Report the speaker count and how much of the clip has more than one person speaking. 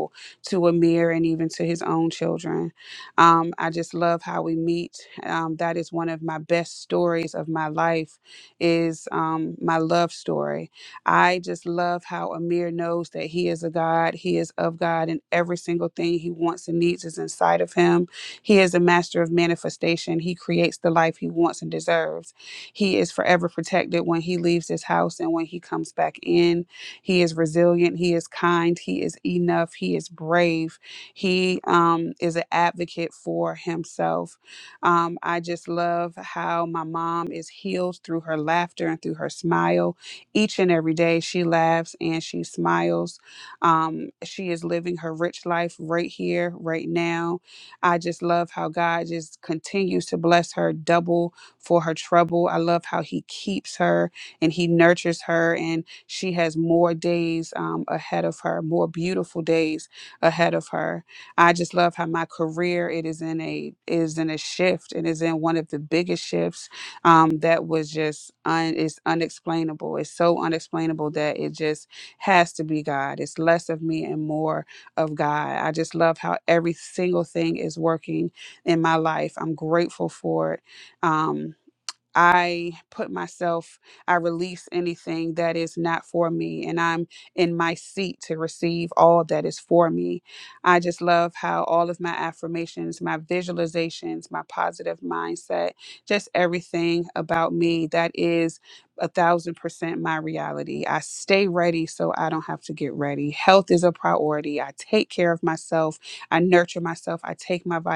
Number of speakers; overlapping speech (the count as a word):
one, no overlap